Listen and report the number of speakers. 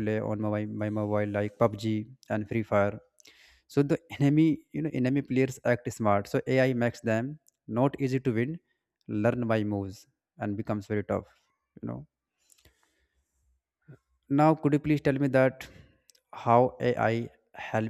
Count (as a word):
one